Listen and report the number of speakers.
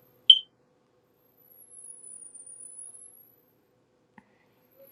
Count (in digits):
0